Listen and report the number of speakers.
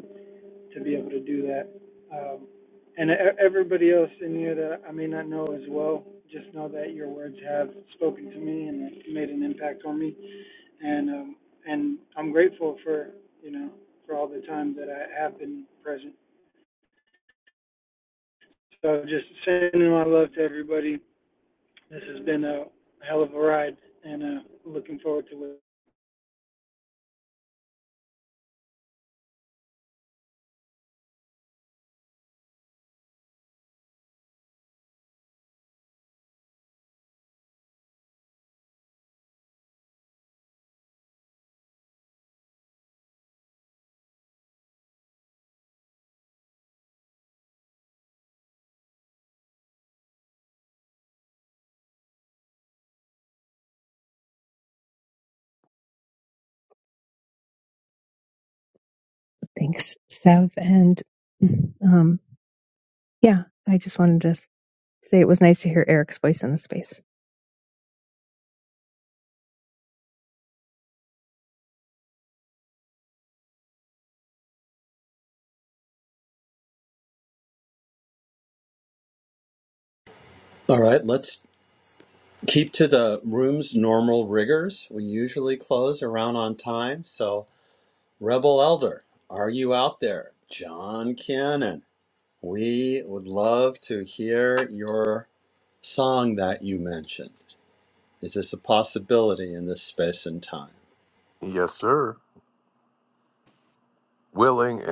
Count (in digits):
4